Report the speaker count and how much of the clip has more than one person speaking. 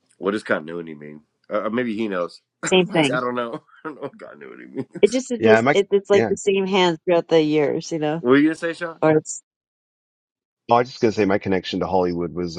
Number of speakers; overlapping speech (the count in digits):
3, about 6%